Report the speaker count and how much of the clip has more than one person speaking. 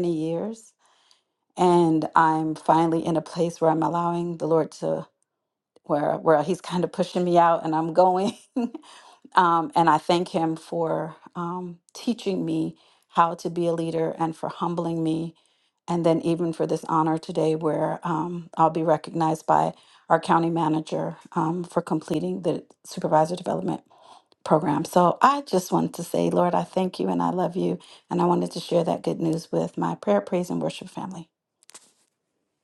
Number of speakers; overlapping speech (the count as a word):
one, no overlap